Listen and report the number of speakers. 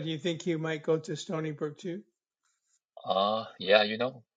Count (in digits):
2